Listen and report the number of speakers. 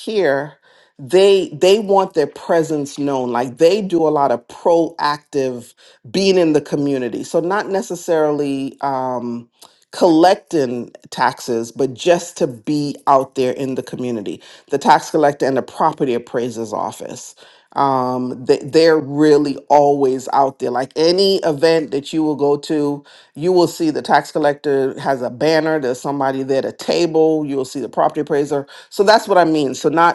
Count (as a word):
one